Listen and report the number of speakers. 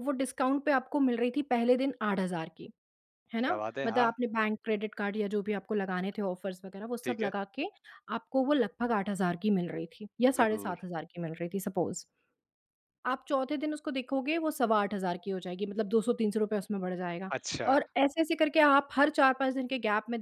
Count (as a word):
two